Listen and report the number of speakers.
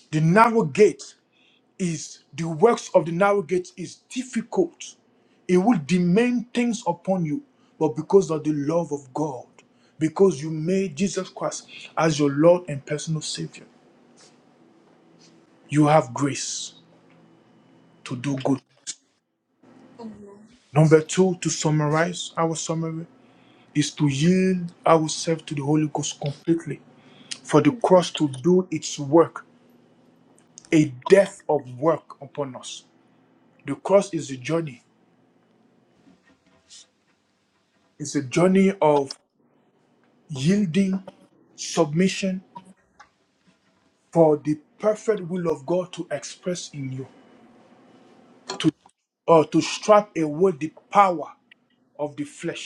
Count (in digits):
1